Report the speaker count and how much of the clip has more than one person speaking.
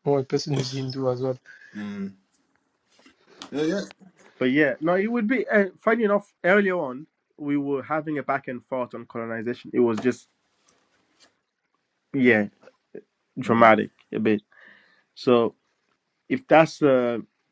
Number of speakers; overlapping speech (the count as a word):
three, about 2%